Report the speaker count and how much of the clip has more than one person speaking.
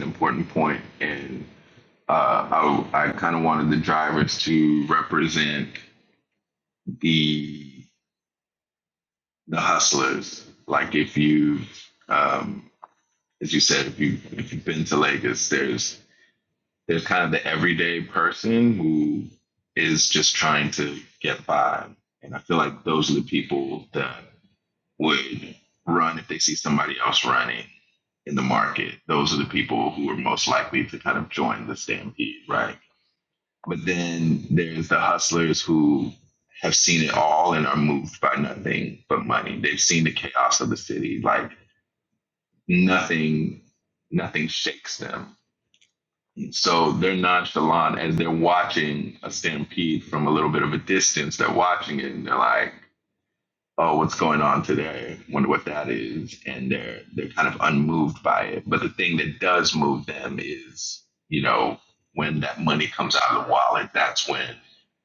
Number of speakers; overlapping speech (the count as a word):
one, no overlap